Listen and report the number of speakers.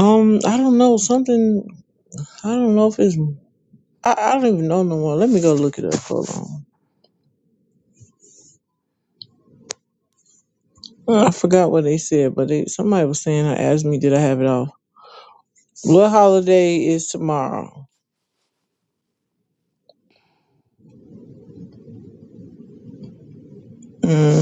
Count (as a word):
one